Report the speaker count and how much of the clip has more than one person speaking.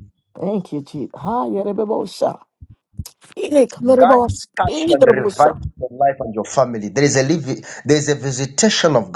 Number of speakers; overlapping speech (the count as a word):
two, about 14%